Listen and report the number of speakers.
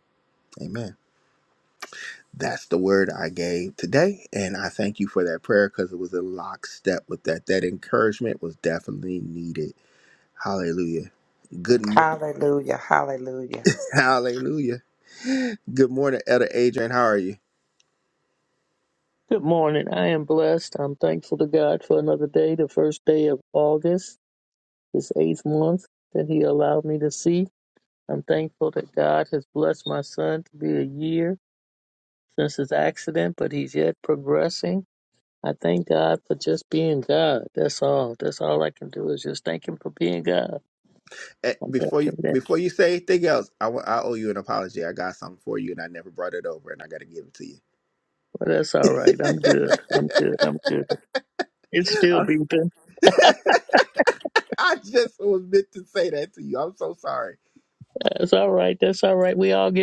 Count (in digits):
3